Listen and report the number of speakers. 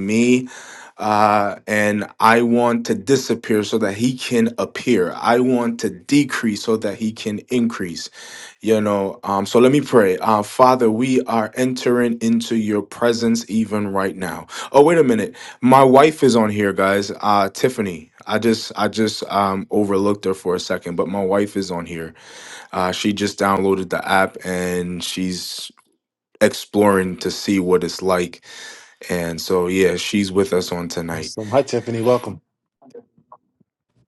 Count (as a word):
two